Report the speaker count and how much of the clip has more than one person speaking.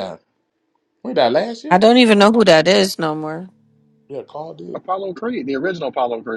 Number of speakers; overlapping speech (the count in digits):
3, about 3%